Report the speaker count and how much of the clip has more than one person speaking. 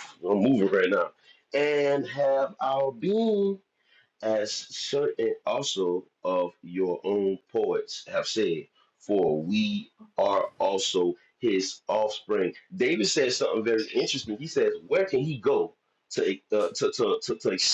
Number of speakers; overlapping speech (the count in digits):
1, no overlap